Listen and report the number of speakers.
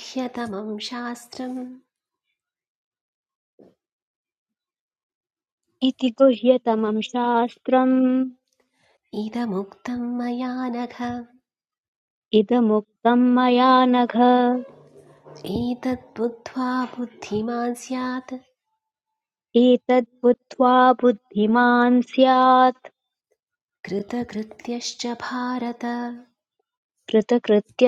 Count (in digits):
2